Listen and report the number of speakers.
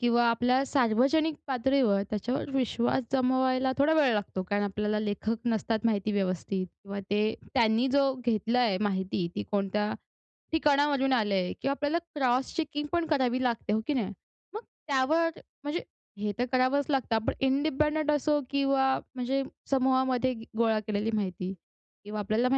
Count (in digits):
1